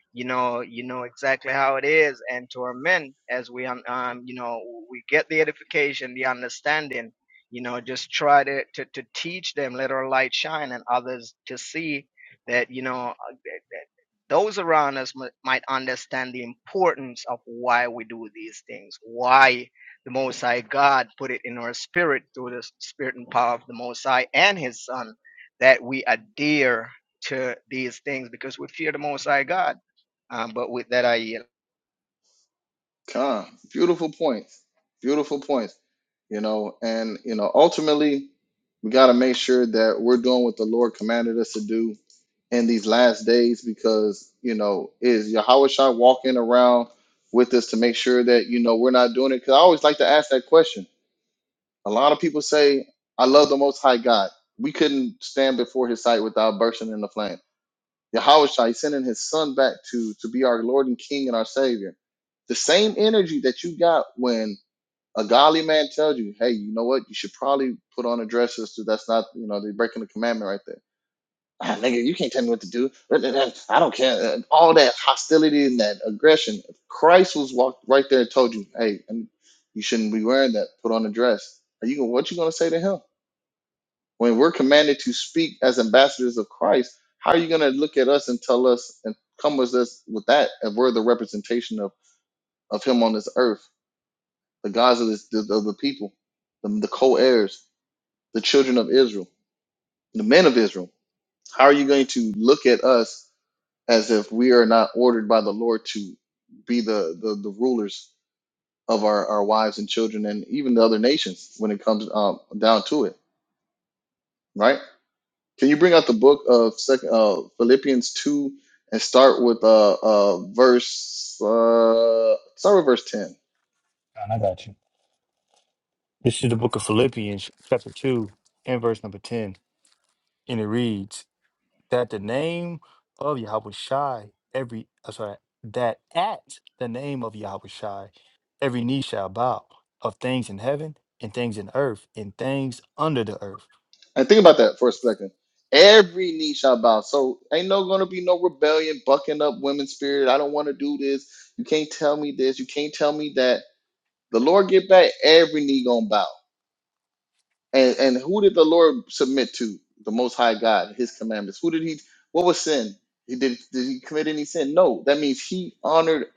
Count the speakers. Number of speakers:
three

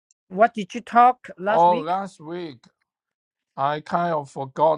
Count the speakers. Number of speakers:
two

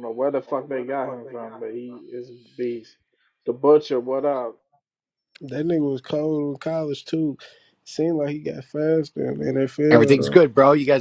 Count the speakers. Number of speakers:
three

